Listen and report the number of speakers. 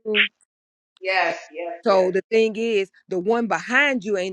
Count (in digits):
2